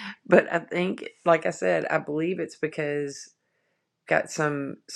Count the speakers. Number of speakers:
one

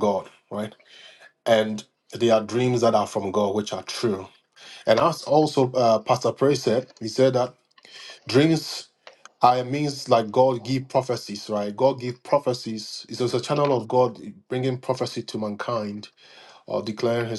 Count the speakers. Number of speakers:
one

